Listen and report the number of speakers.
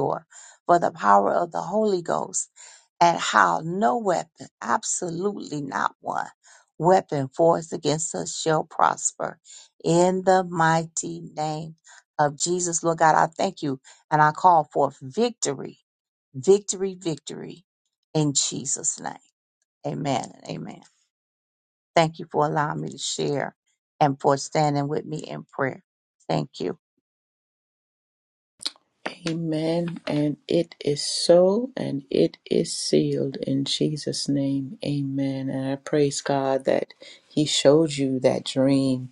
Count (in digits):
2